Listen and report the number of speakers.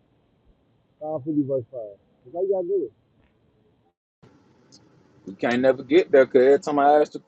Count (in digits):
2